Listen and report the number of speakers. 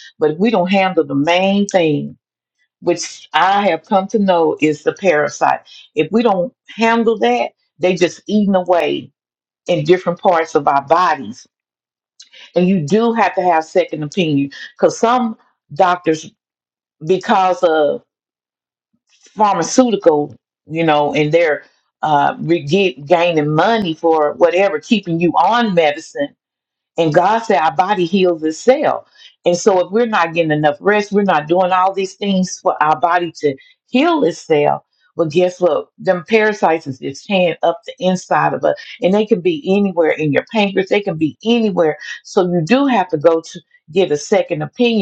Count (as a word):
one